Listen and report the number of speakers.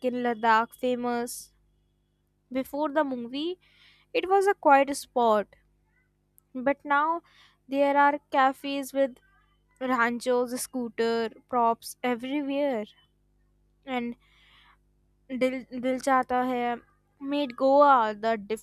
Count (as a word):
one